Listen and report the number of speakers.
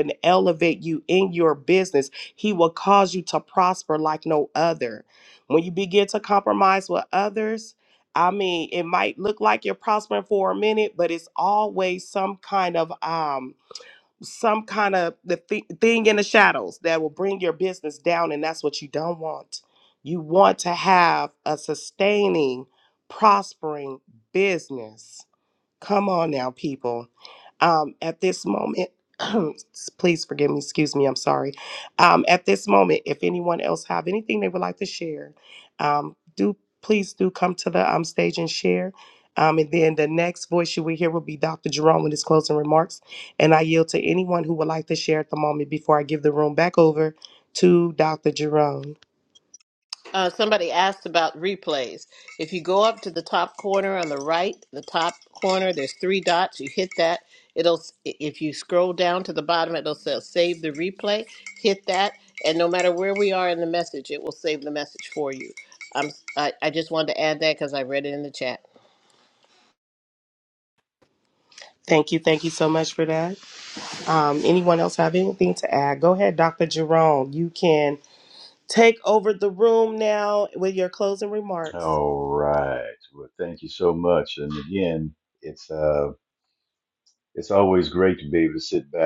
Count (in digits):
3